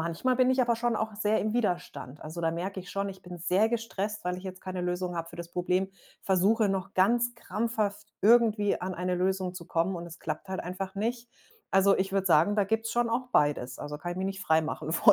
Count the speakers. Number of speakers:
1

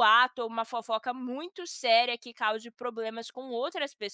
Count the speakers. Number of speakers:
1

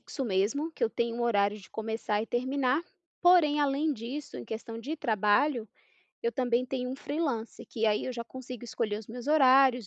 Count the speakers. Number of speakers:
1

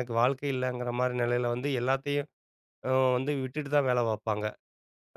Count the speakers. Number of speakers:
1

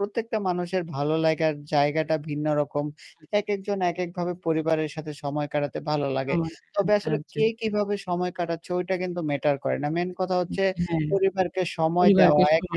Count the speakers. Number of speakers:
2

